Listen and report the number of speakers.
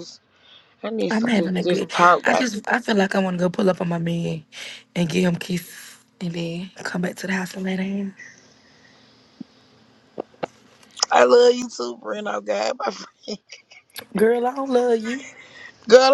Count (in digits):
2